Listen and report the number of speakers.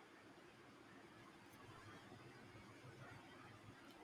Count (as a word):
zero